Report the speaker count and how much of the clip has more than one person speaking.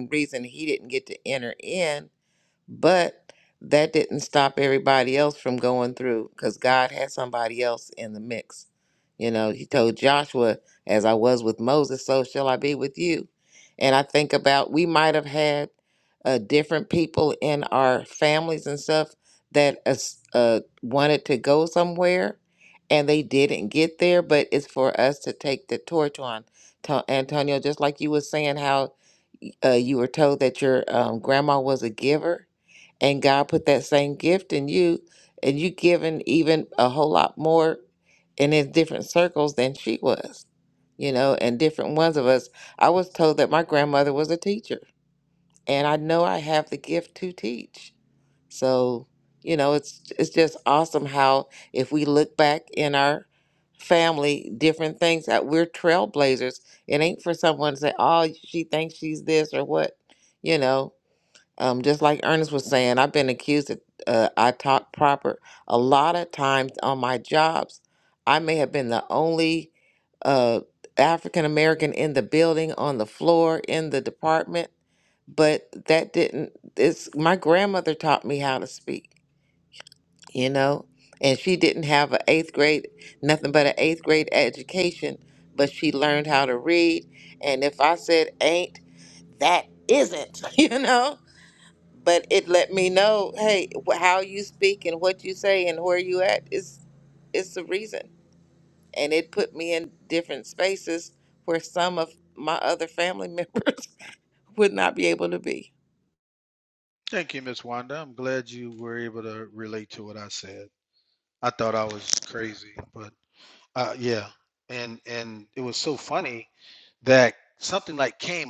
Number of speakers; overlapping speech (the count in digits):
2, no overlap